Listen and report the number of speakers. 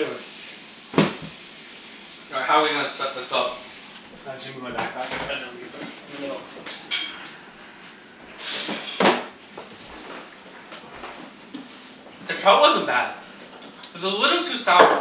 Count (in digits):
2